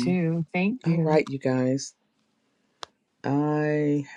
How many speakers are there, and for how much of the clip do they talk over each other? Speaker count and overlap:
two, about 12%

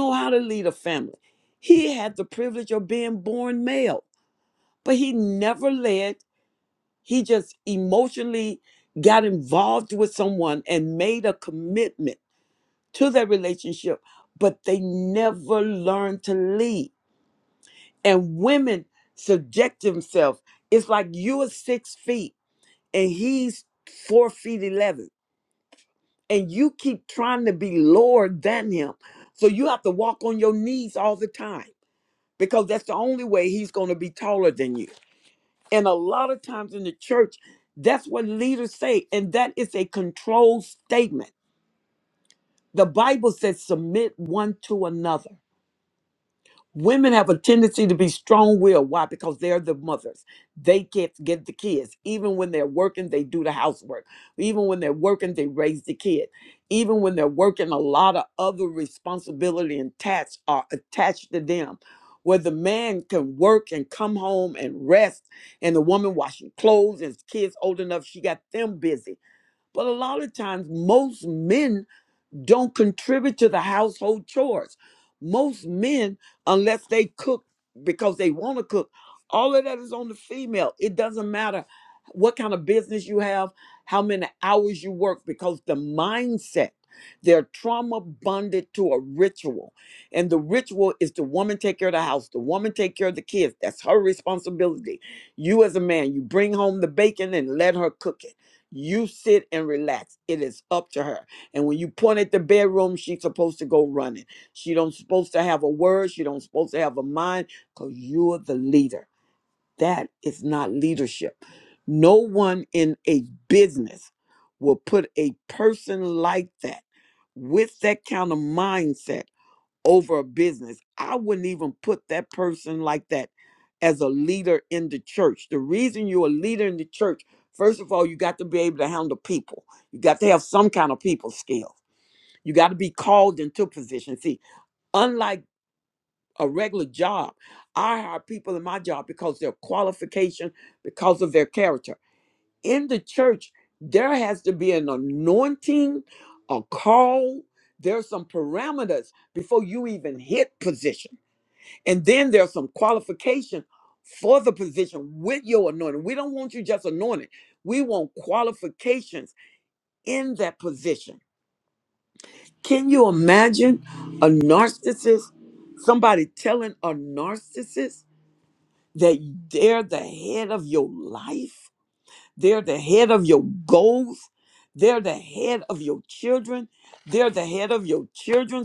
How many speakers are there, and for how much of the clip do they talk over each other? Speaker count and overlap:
one, no overlap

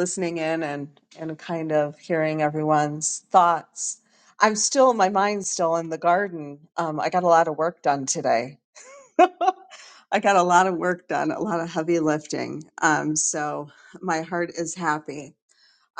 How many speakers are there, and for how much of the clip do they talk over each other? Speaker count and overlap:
one, no overlap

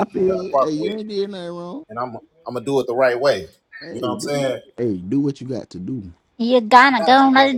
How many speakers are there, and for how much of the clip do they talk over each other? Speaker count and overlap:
three, about 31%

